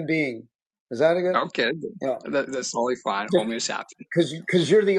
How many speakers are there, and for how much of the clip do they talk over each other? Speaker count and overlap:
2, about 5%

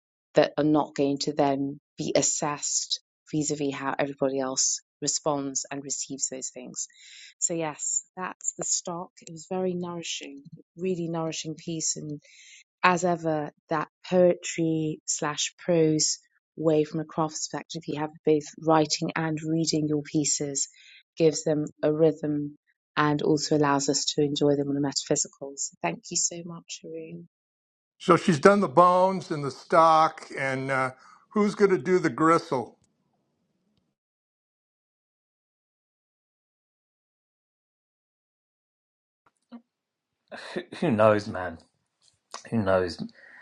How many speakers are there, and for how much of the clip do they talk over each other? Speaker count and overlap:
3, no overlap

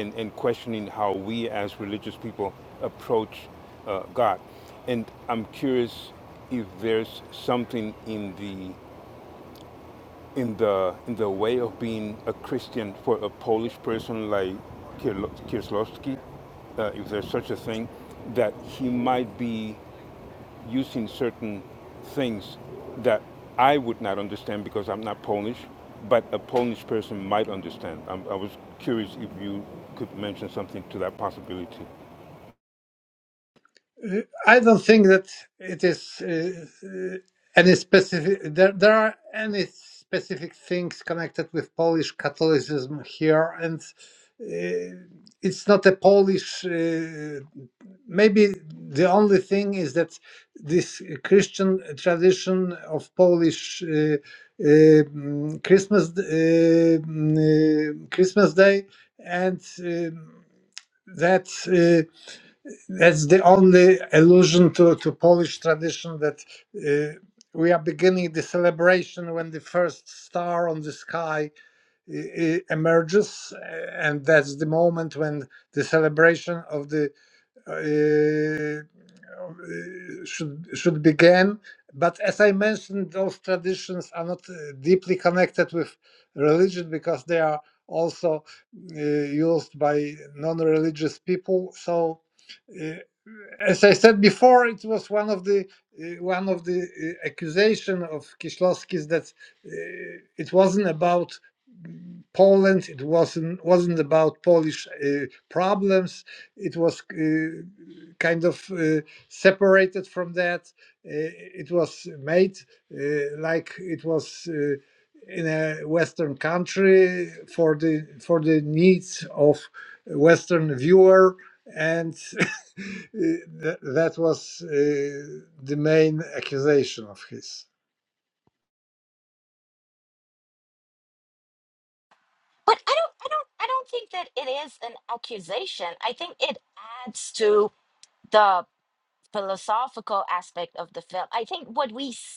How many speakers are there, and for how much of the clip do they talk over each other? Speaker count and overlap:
3, no overlap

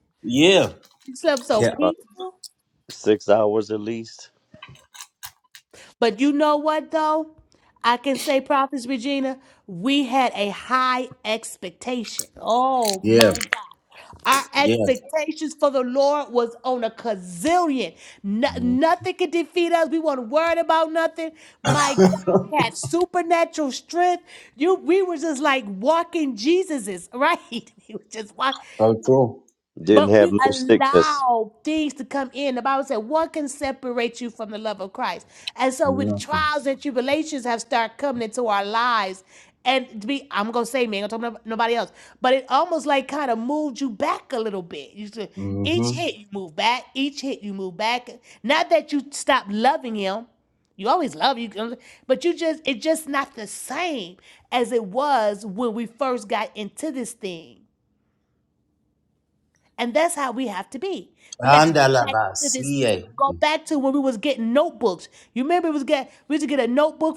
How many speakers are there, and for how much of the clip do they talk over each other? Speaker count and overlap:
3, about 6%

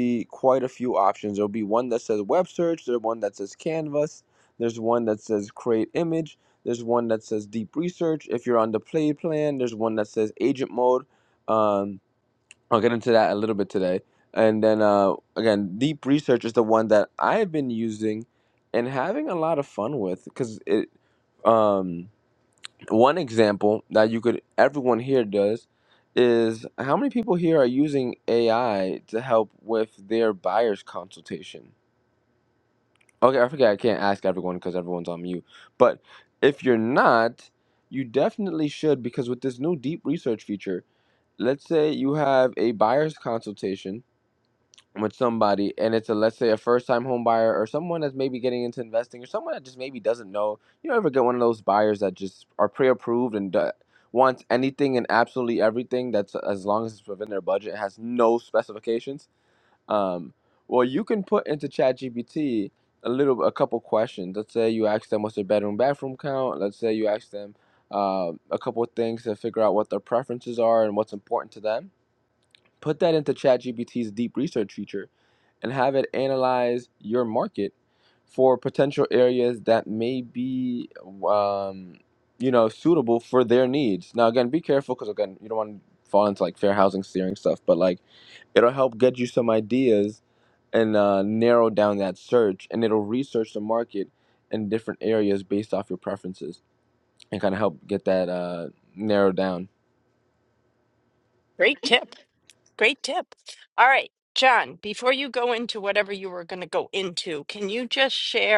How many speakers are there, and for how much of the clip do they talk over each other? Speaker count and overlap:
2, no overlap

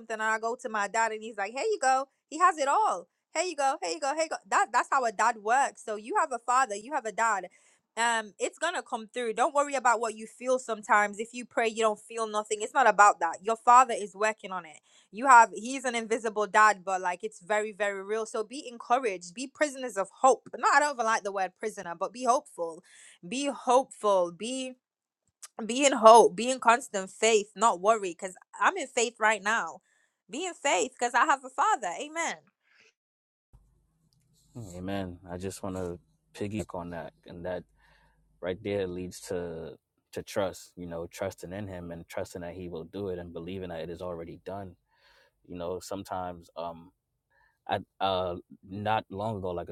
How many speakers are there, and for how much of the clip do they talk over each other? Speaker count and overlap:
2, no overlap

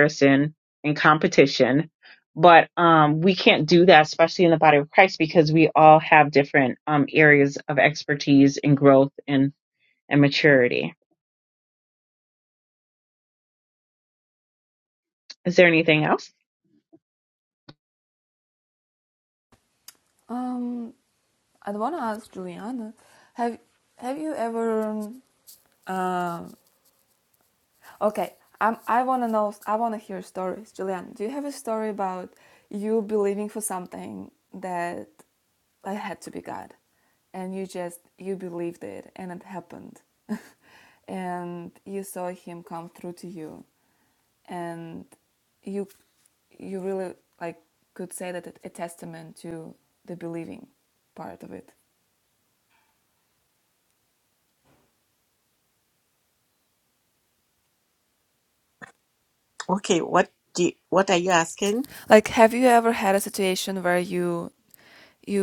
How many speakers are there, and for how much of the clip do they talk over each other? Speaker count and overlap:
3, no overlap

